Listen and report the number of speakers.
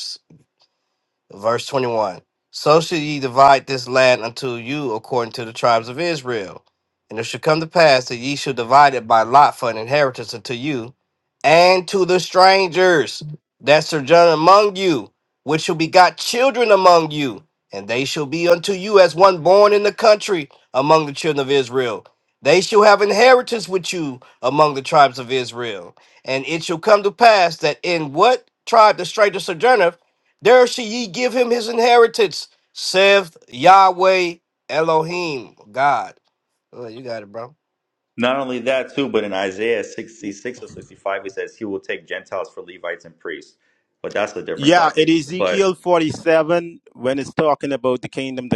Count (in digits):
3